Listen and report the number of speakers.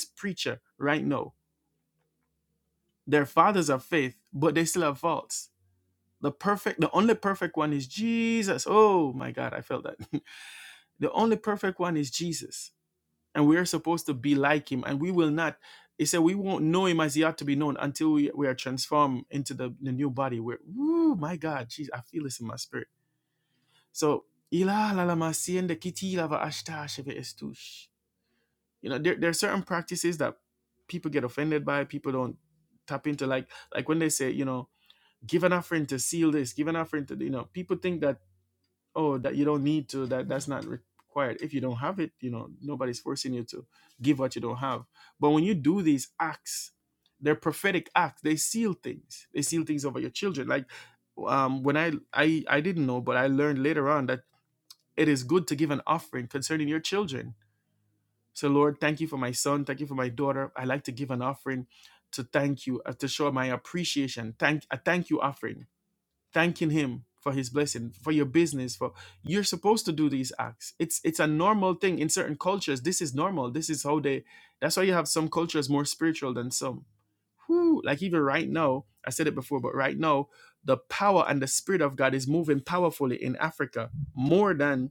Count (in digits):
1